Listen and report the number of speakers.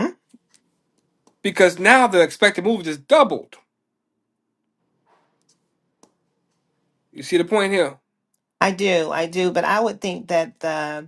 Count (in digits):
2